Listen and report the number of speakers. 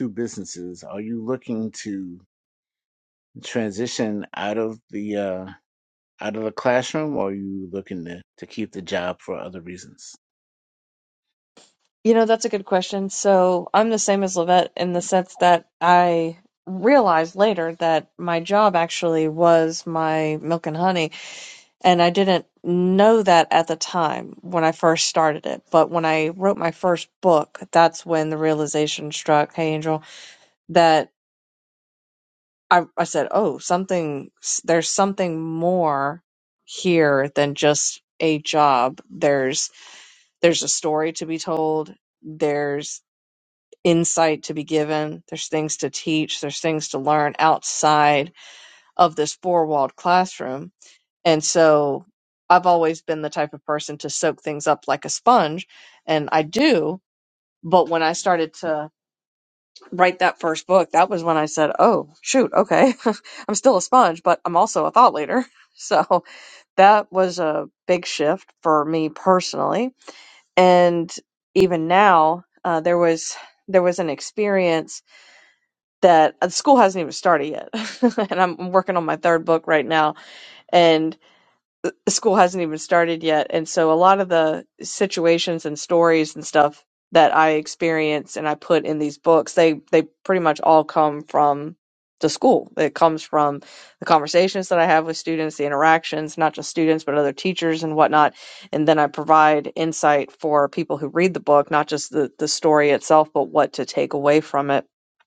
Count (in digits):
2